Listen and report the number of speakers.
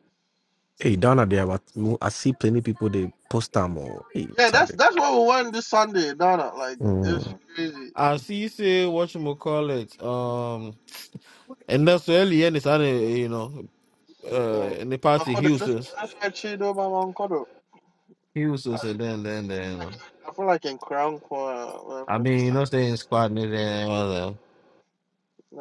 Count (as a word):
three